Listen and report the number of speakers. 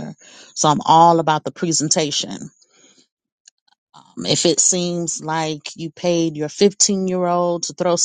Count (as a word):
one